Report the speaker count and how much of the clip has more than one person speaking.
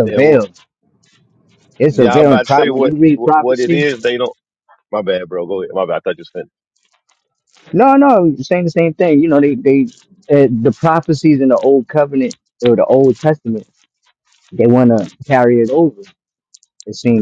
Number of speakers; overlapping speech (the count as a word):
two, about 13%